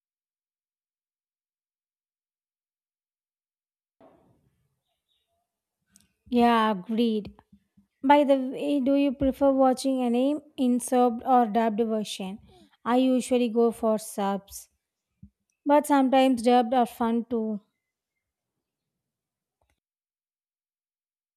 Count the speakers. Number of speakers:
1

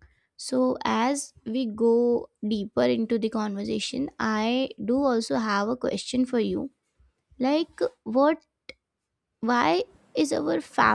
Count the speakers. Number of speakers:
1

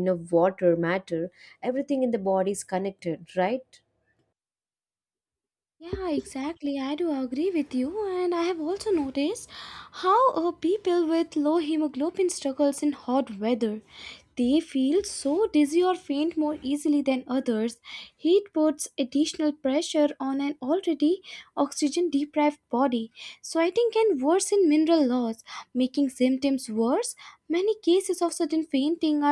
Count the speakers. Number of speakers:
2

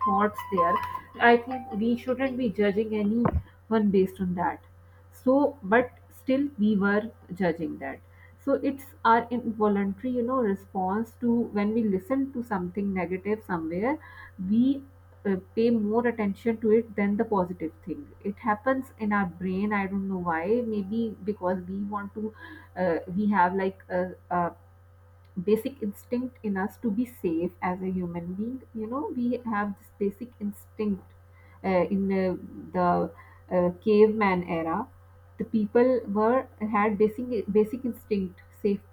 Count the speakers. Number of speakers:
1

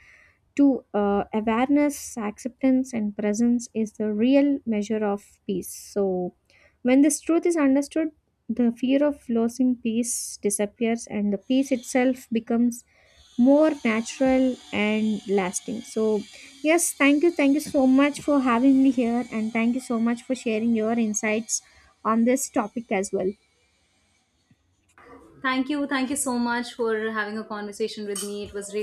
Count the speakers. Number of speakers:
2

